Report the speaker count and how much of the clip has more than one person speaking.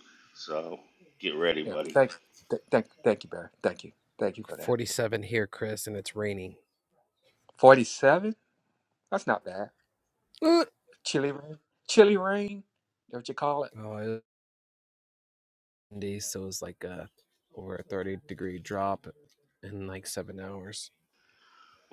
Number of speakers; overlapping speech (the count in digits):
3, about 2%